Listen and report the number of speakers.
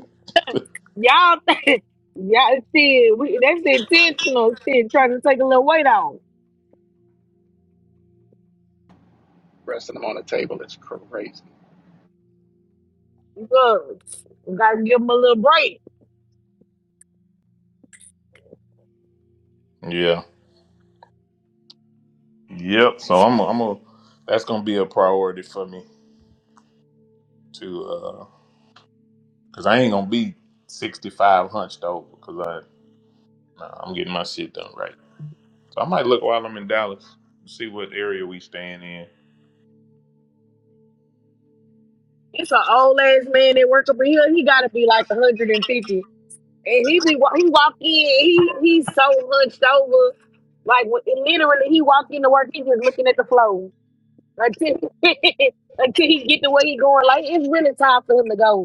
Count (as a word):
three